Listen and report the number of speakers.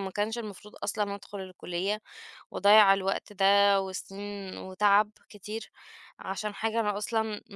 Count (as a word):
one